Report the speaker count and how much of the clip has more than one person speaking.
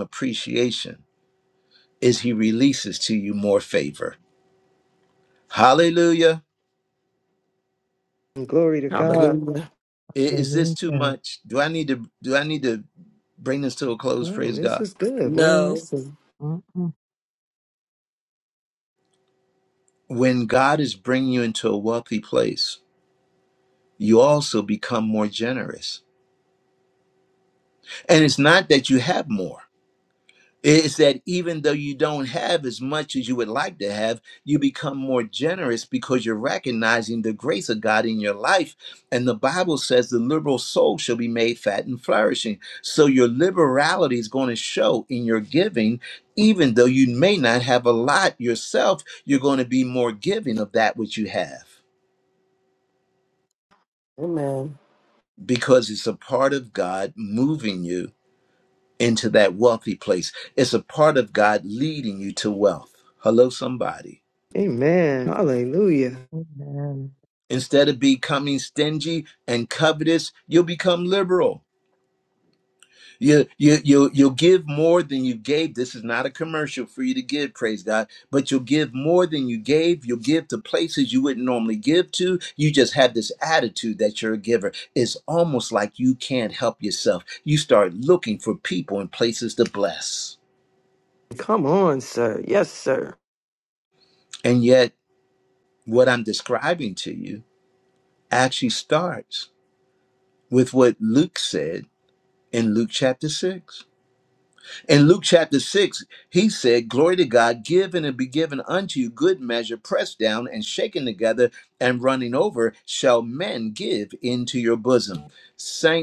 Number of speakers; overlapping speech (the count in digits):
4, about 2%